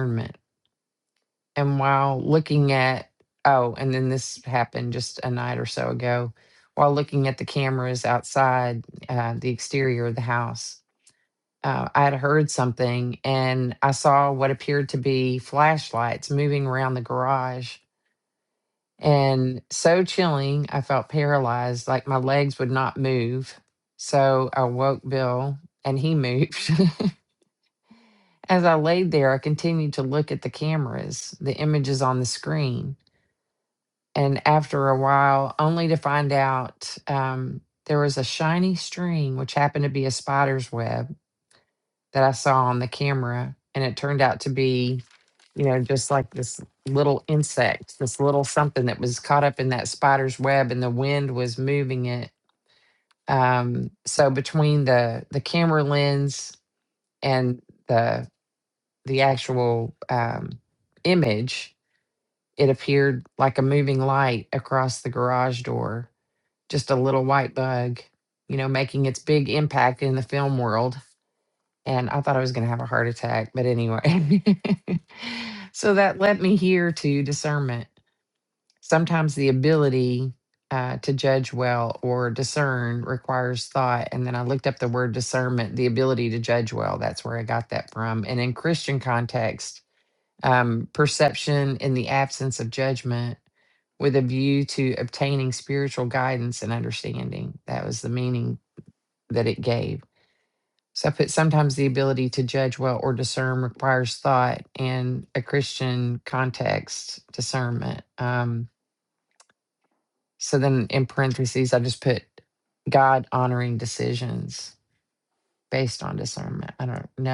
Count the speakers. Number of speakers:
1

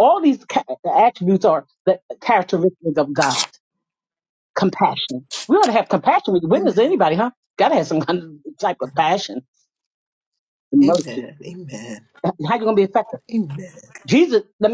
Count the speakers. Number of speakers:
2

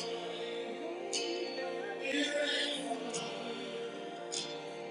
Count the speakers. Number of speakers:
0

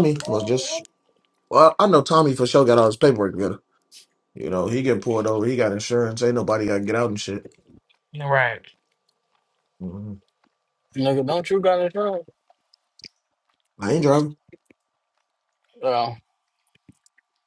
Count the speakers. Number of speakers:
3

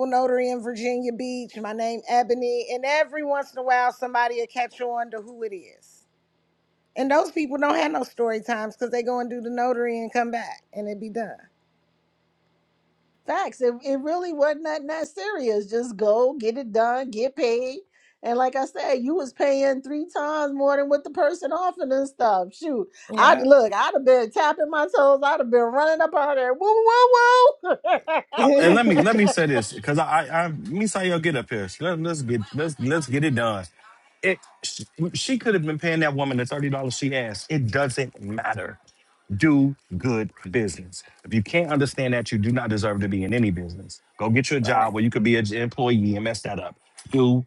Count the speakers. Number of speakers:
3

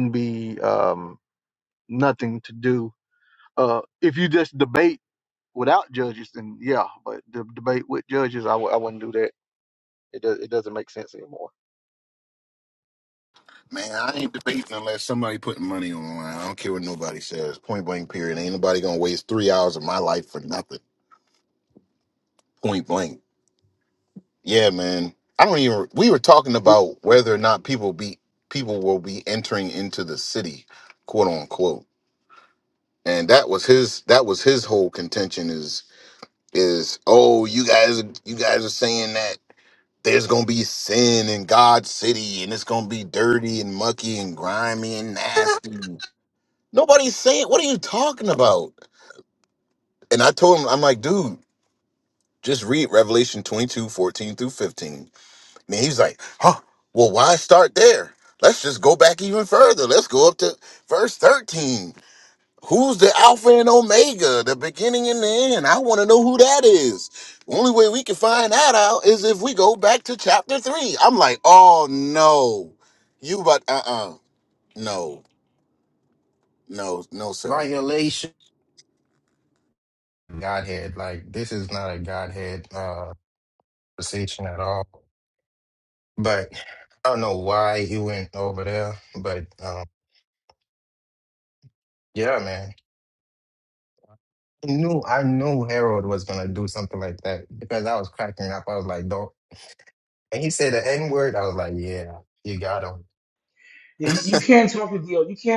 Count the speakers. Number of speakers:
4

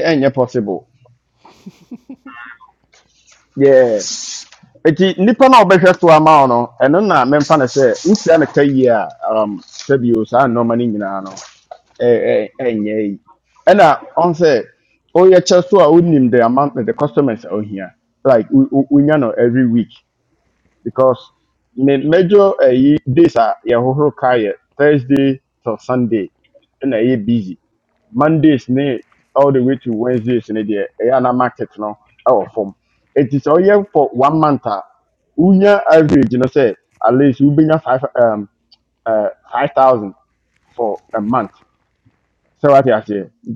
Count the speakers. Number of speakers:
1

